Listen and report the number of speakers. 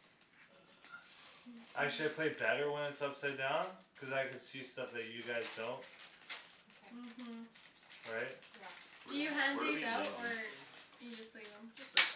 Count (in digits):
4